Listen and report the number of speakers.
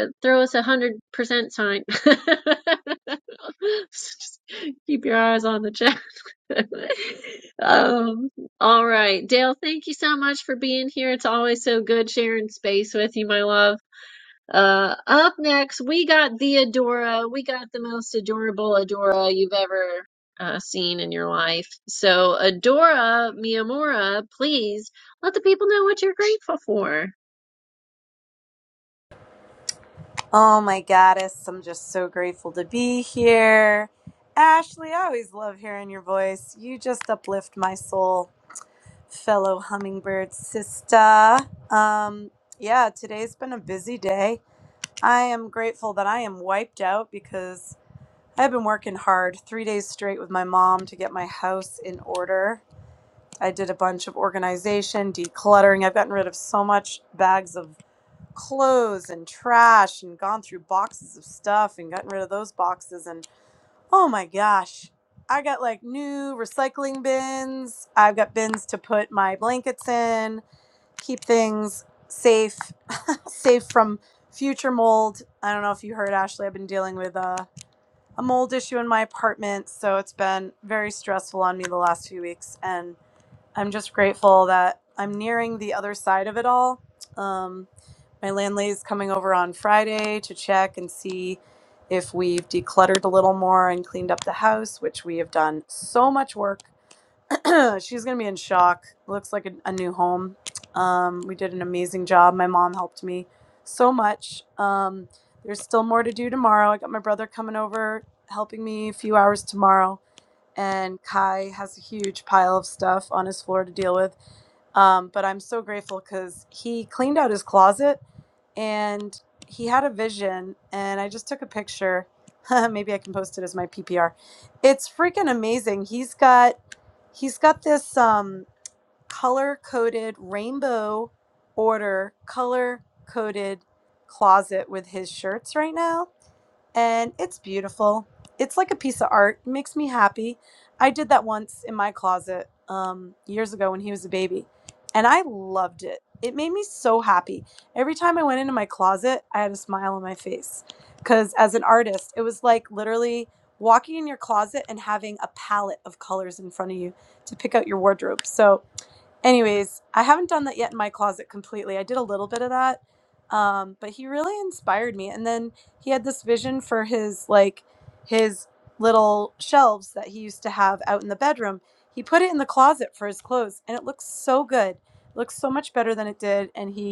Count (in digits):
2